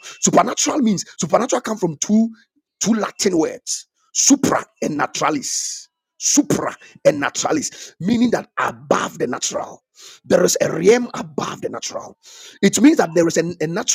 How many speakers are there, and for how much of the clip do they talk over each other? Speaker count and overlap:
one, no overlap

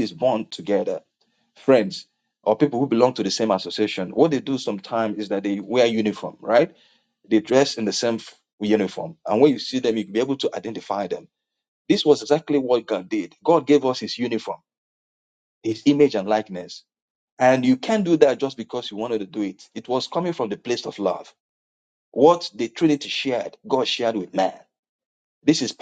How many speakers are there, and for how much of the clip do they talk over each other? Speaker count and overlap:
one, no overlap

